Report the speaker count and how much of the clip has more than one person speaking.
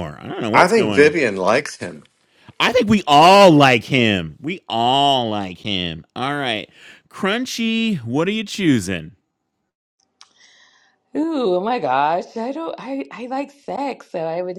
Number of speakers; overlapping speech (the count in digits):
3, about 4%